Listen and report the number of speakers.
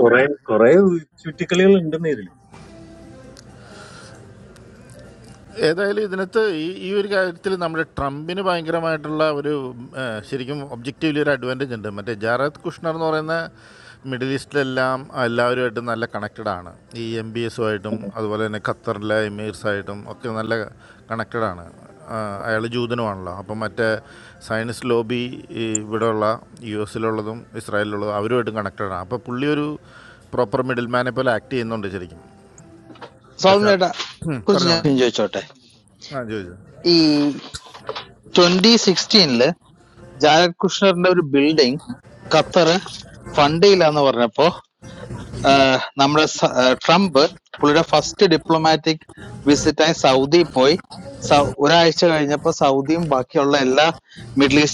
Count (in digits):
3